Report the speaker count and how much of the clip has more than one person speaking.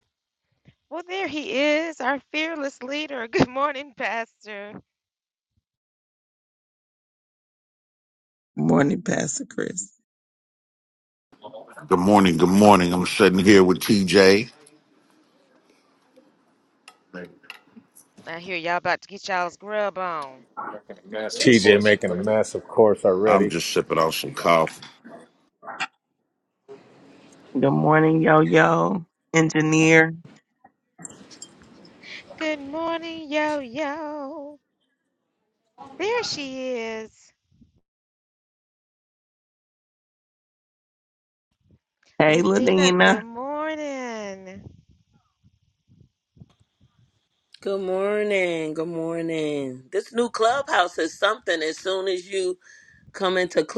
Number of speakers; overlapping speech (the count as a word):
five, about 2%